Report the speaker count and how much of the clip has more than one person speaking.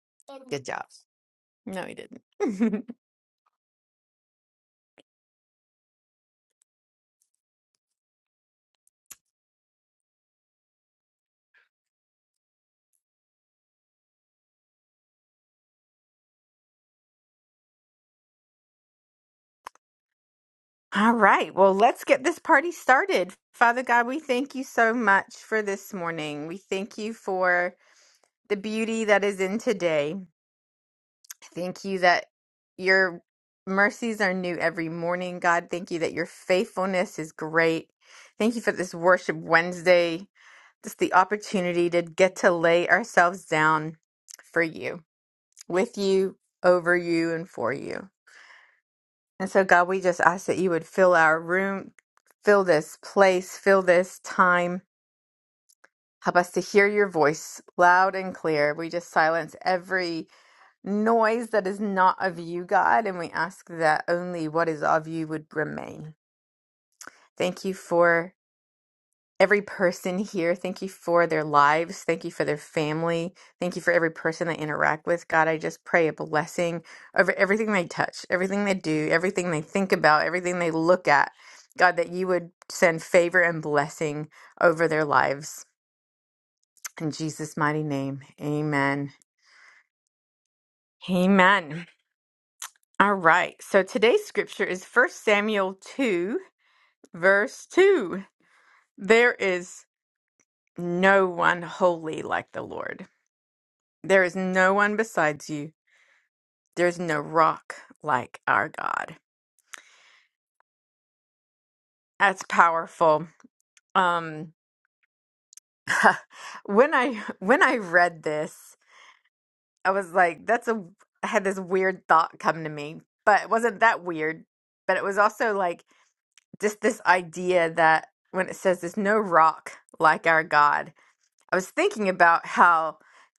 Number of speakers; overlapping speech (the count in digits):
1, no overlap